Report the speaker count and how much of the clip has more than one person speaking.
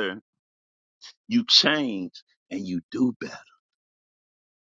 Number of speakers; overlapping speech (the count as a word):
one, no overlap